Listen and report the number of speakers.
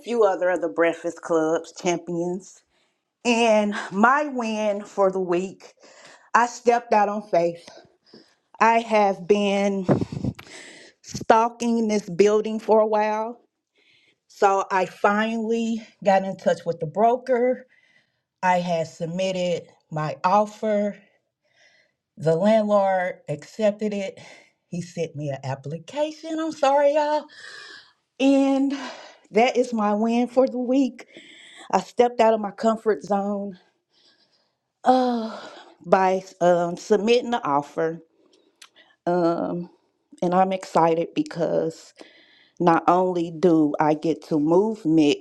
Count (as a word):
one